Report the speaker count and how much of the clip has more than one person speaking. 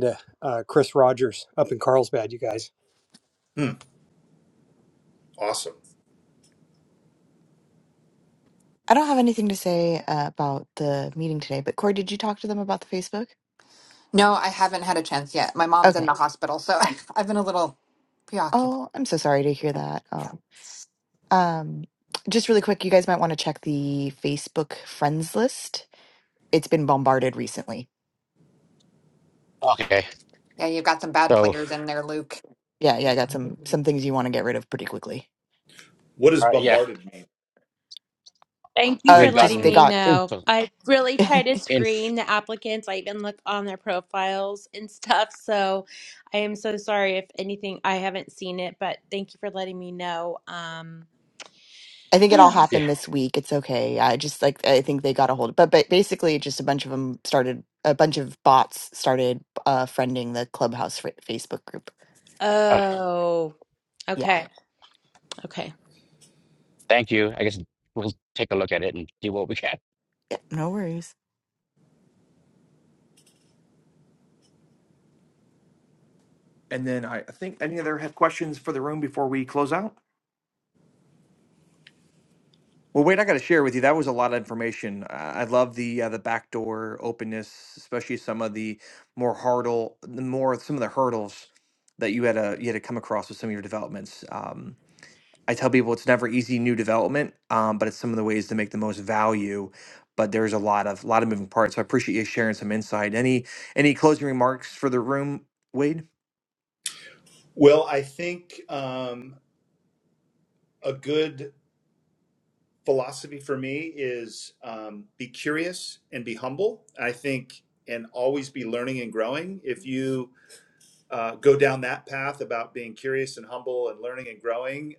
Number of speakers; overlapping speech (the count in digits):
7, about 3%